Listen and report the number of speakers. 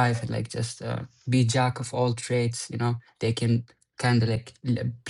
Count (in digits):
1